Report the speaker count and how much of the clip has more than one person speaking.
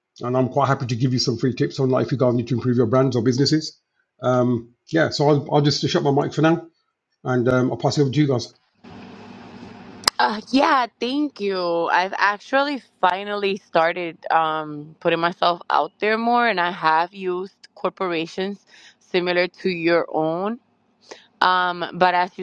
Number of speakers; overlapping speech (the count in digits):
2, no overlap